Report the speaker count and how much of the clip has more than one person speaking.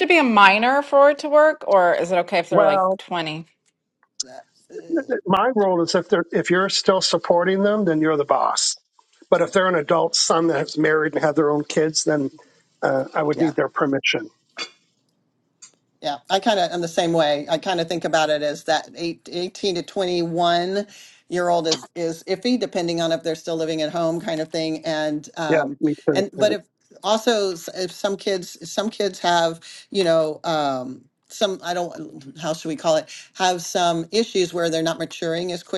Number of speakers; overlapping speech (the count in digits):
3, about 4%